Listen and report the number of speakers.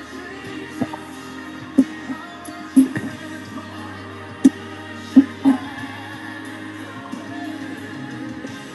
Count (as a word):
zero